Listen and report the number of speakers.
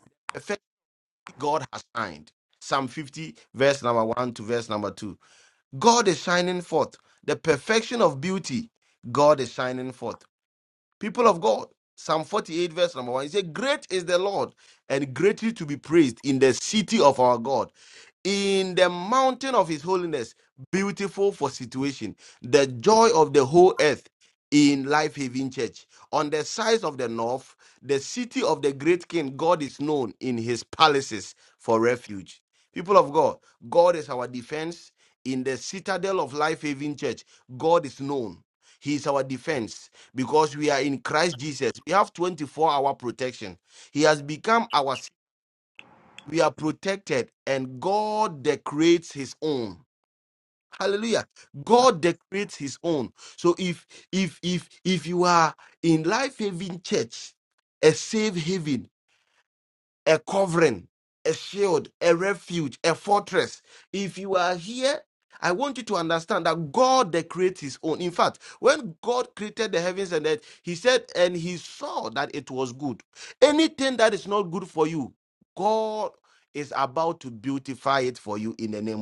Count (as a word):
one